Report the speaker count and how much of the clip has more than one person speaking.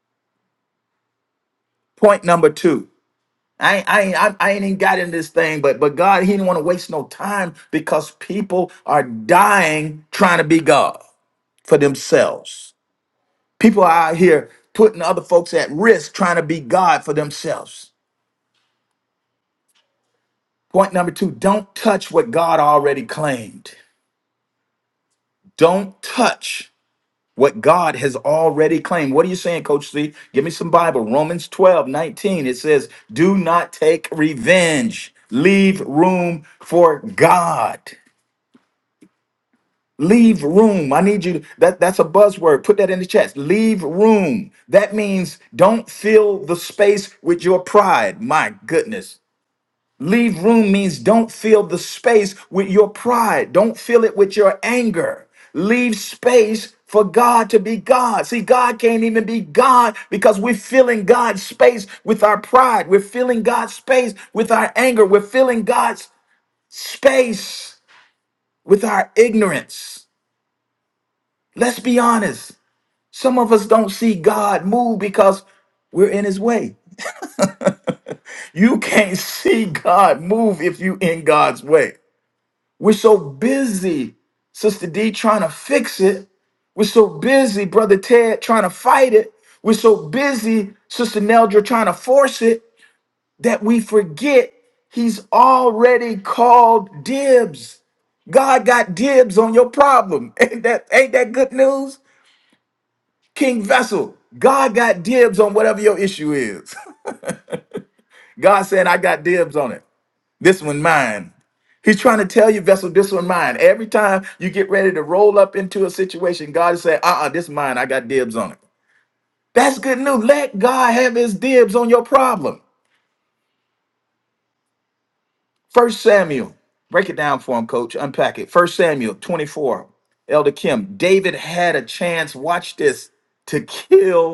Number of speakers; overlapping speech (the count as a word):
one, no overlap